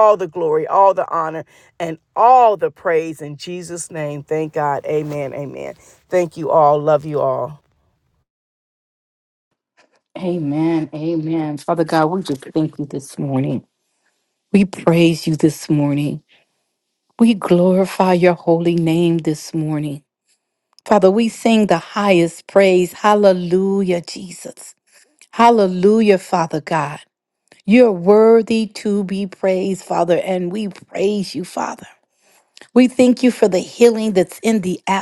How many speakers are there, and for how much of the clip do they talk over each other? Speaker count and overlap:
2, no overlap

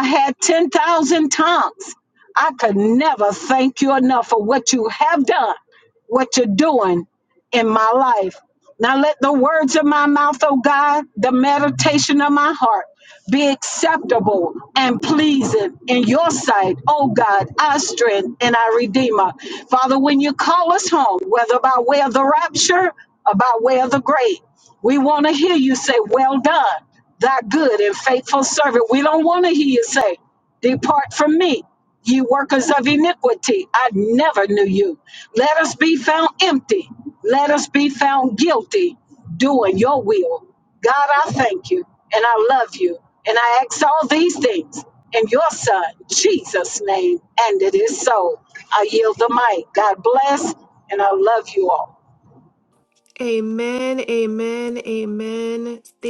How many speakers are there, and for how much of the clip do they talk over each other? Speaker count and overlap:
2, no overlap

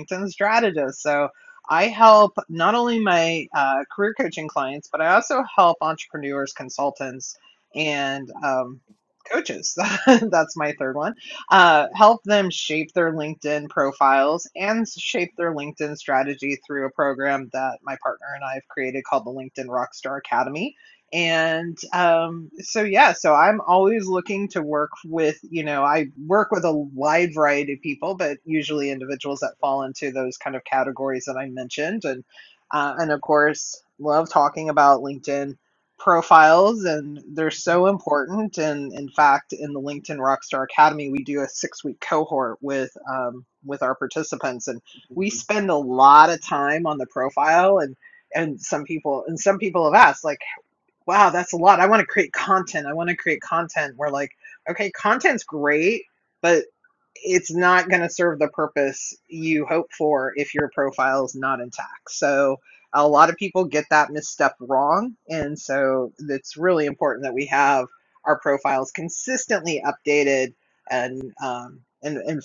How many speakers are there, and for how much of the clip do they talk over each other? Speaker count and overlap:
1, no overlap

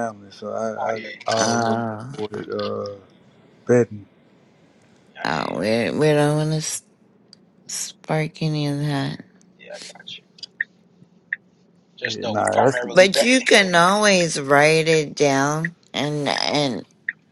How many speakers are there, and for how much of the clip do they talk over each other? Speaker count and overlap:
3, about 15%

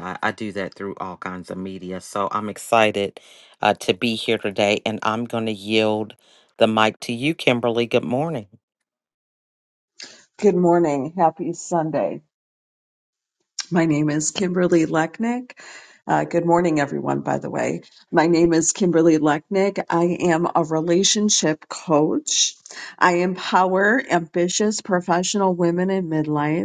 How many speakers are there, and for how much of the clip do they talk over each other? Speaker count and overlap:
2, no overlap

